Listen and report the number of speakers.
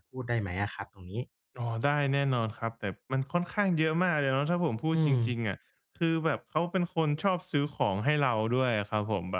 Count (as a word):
two